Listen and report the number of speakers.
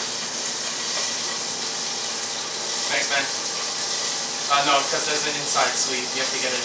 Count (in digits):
1